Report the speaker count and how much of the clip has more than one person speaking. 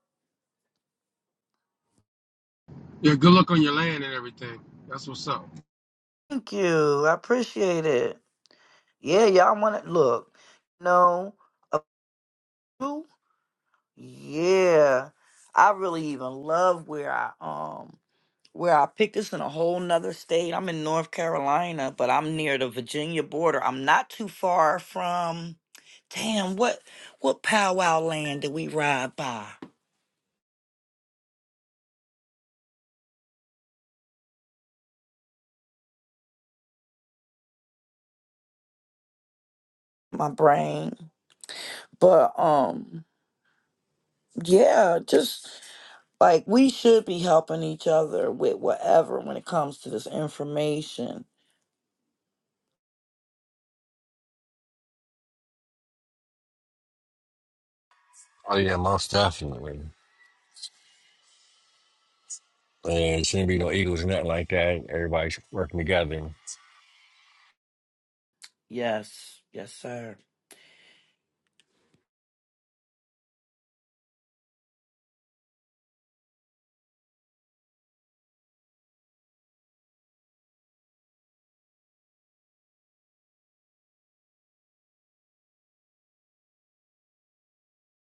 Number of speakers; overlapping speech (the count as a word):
three, no overlap